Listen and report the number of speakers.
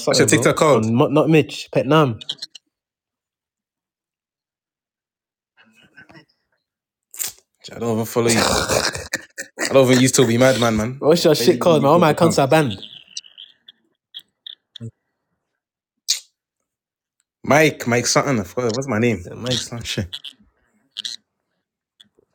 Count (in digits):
2